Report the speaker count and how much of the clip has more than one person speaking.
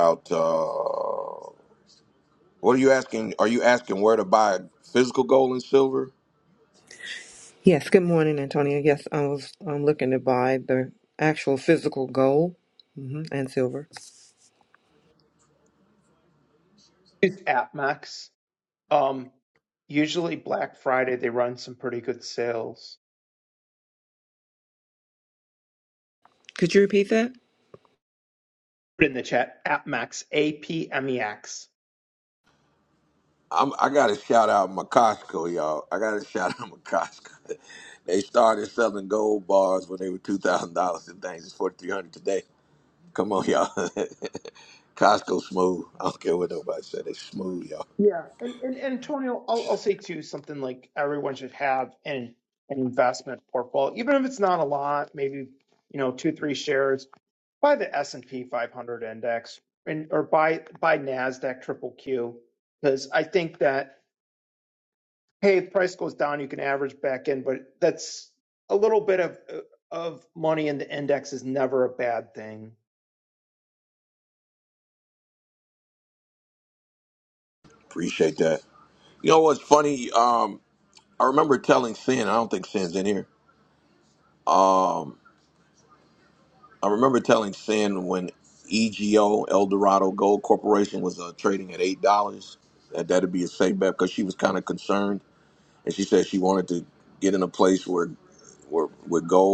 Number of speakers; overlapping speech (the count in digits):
3, no overlap